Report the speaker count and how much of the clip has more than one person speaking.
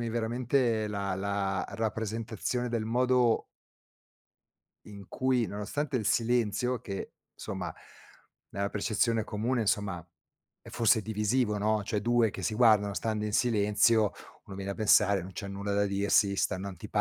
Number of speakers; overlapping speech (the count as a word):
one, no overlap